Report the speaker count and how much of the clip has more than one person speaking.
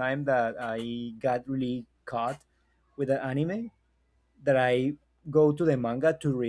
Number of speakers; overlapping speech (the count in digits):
1, no overlap